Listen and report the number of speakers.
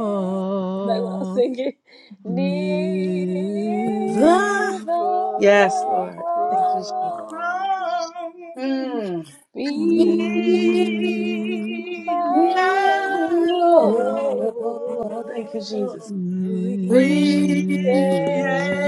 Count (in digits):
4